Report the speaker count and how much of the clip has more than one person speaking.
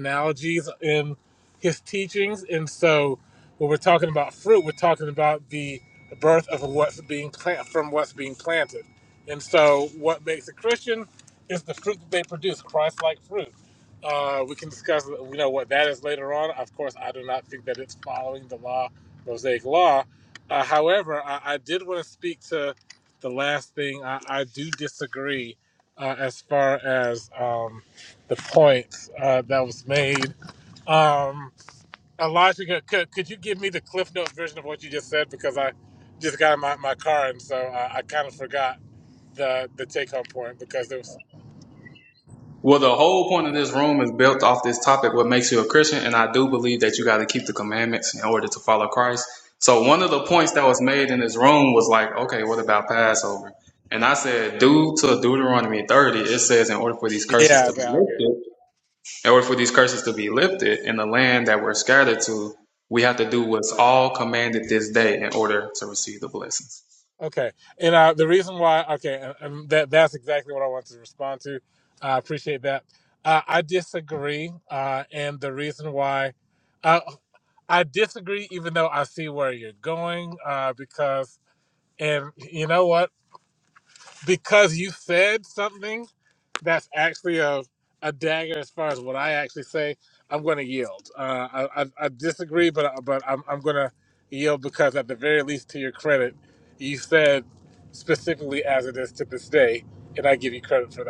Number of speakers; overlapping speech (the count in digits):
2, about 1%